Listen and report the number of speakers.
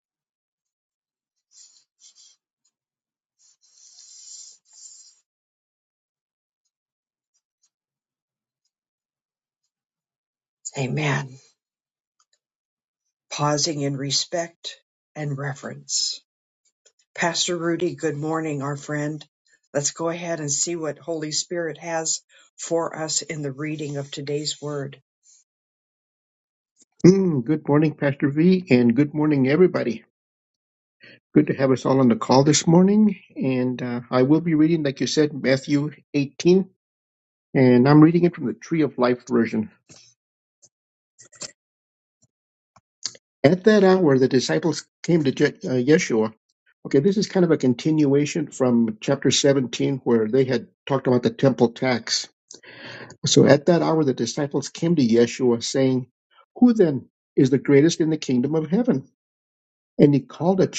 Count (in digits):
2